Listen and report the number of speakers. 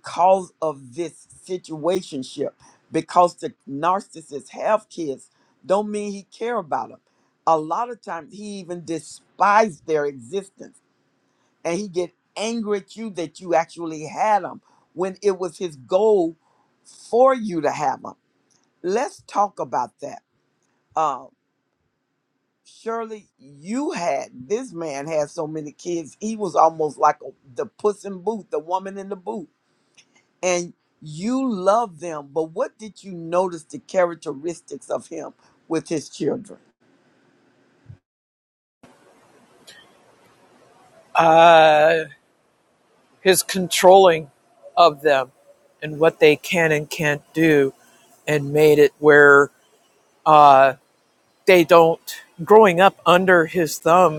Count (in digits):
2